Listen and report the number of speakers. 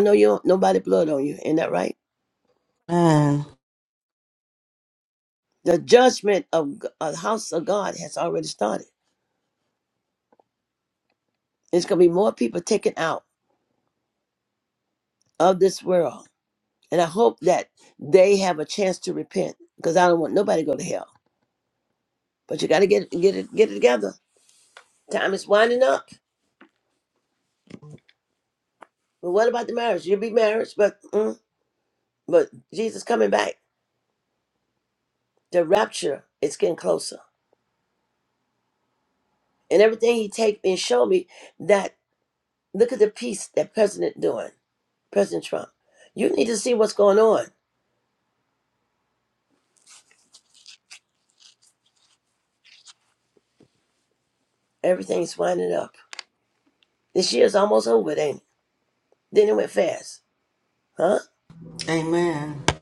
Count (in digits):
2